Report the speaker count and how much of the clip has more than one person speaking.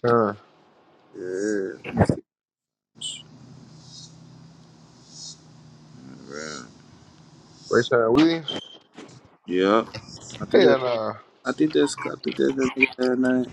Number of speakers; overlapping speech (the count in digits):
2, about 2%